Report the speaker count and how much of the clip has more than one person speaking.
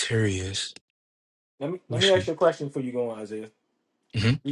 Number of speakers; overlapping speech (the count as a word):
two, about 8%